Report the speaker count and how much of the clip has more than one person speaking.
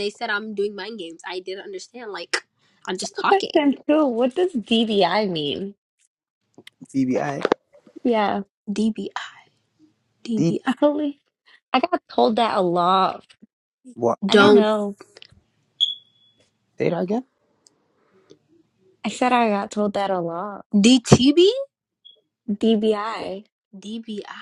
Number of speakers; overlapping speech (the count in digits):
3, about 4%